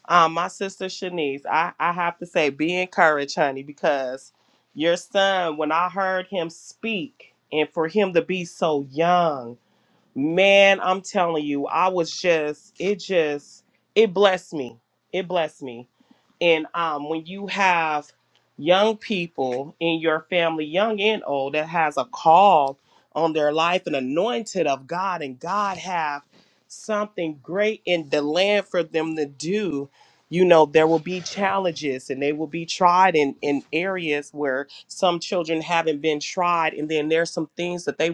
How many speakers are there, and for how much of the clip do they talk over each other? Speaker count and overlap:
1, no overlap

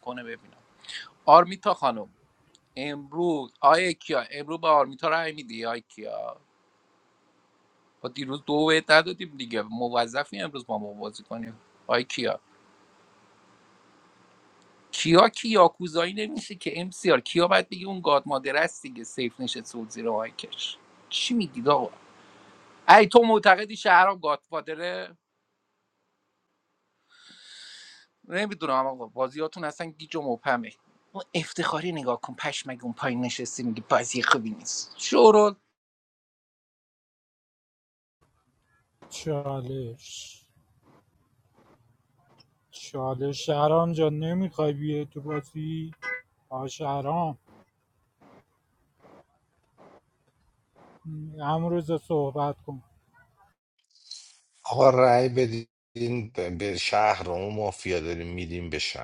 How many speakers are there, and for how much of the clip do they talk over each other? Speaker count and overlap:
3, no overlap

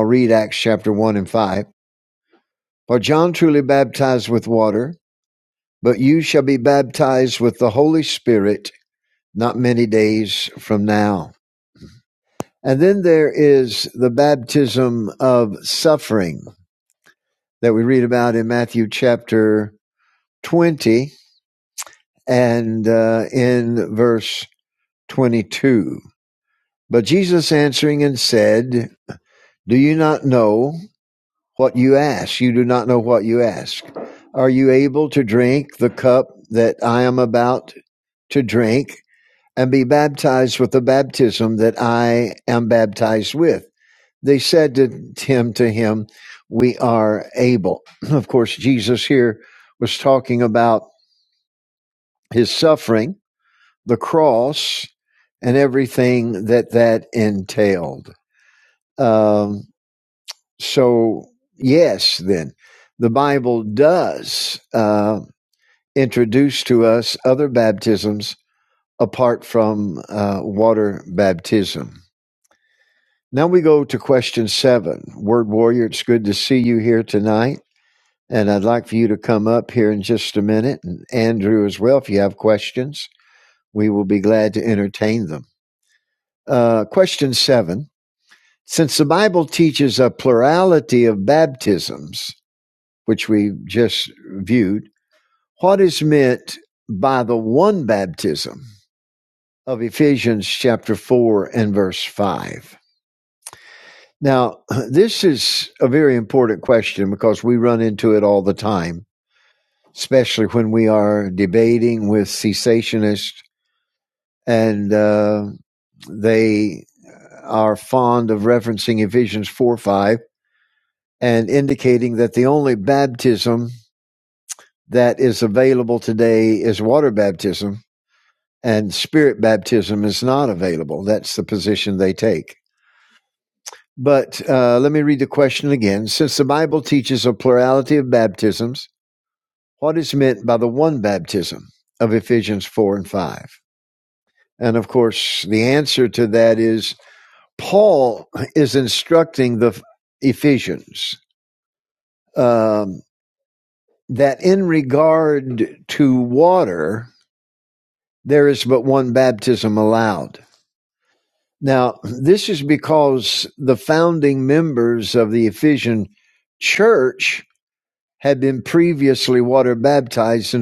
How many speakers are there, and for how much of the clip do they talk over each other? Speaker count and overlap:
1, no overlap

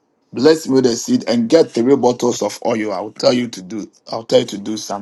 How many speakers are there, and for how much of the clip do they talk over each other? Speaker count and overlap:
1, no overlap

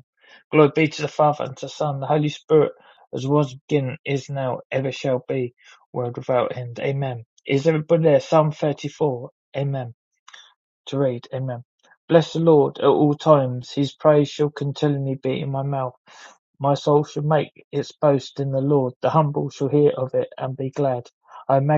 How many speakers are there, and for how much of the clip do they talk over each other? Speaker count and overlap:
1, no overlap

